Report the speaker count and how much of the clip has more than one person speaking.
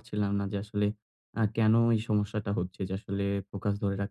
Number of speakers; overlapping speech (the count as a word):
one, no overlap